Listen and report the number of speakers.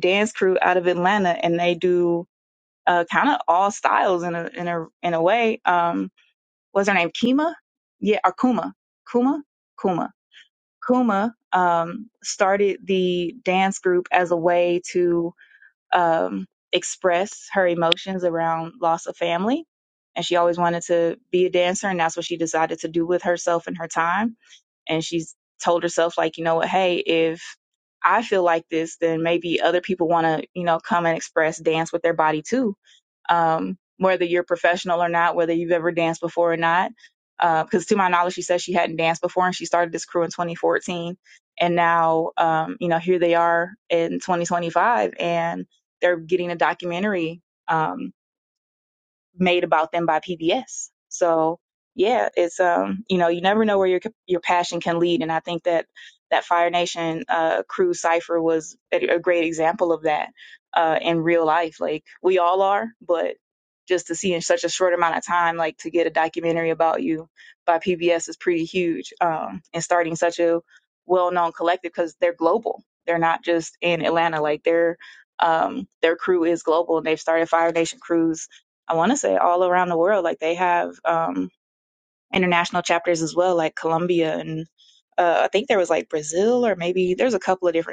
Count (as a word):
one